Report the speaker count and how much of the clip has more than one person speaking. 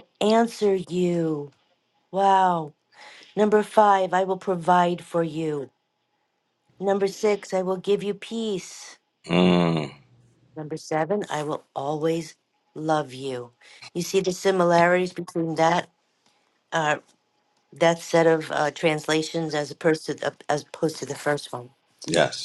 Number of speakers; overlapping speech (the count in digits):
2, no overlap